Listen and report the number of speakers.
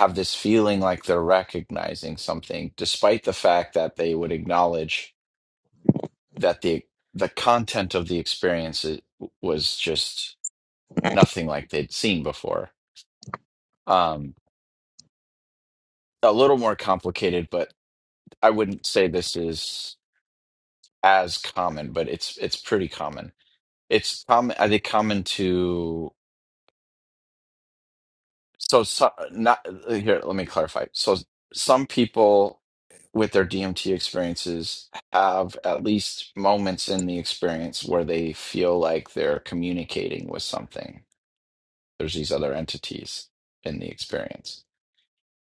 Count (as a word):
one